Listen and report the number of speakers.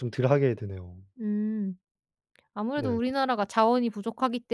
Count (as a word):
two